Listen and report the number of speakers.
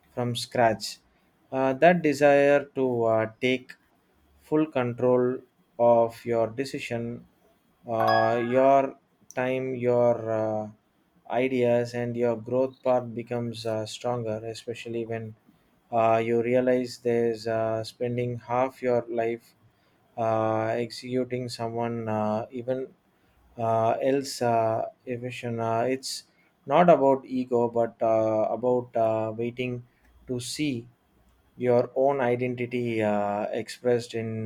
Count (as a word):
one